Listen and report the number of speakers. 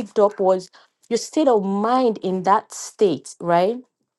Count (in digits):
1